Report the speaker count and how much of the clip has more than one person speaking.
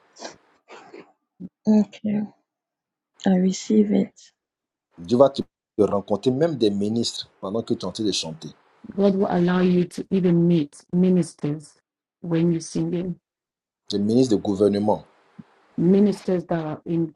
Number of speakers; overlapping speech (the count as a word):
three, no overlap